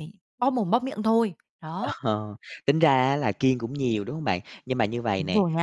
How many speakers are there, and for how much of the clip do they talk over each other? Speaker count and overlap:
2, about 10%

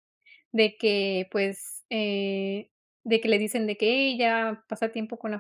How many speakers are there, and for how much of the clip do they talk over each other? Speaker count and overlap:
1, no overlap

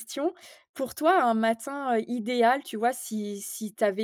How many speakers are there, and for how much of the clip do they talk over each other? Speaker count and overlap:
1, no overlap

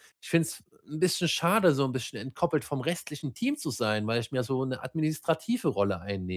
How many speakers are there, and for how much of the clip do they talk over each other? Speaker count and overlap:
1, no overlap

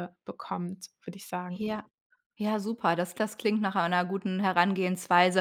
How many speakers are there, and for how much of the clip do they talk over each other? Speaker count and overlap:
2, no overlap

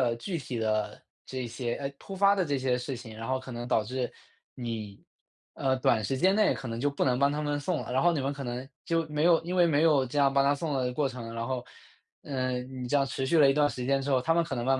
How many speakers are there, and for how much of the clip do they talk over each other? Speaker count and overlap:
1, no overlap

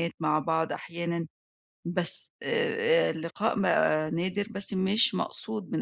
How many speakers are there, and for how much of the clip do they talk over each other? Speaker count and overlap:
1, no overlap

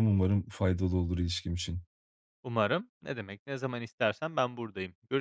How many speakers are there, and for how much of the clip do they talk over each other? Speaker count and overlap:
2, no overlap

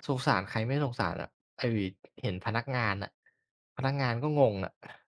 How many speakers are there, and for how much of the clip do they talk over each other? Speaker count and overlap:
1, no overlap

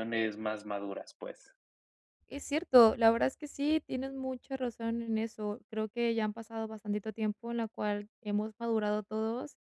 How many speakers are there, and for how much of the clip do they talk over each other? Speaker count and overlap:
2, no overlap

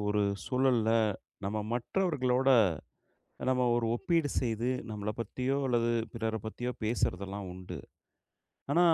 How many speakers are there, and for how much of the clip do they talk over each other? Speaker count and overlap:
1, no overlap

